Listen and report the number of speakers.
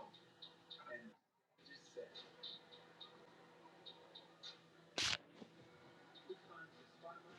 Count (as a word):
zero